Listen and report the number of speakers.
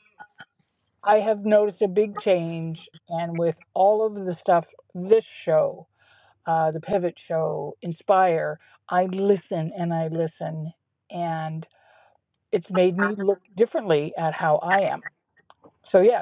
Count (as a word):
one